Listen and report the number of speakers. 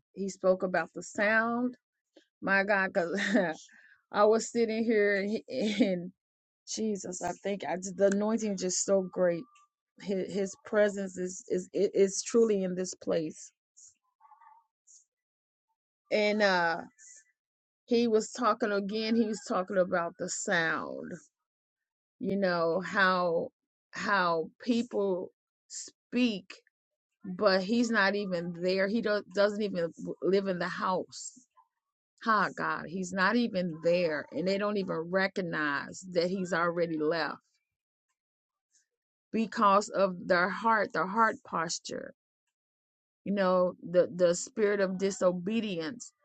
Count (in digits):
1